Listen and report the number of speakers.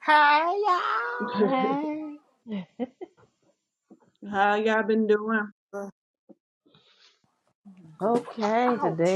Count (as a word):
three